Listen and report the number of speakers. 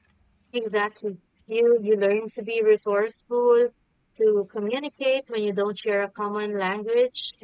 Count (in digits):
1